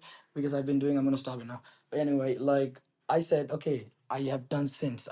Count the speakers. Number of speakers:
one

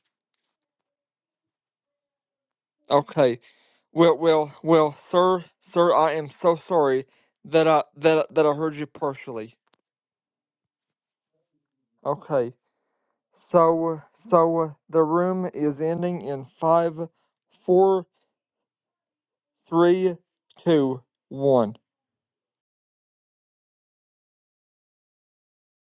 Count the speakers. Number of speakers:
one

